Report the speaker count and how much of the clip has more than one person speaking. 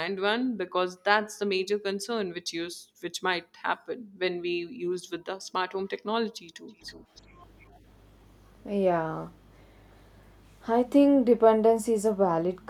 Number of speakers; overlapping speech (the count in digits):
2, no overlap